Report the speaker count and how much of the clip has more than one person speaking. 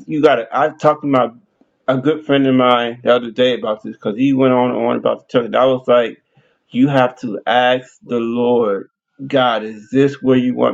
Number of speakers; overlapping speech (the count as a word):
one, no overlap